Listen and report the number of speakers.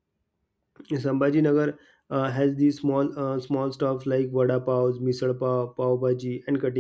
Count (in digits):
1